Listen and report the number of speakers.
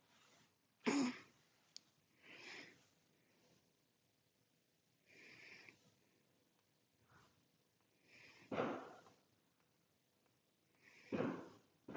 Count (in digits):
0